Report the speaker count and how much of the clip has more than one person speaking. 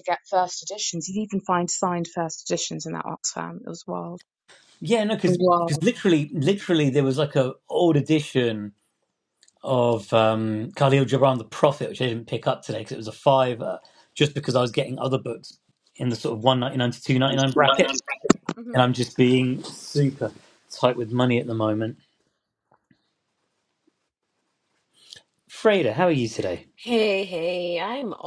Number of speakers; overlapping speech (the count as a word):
three, about 1%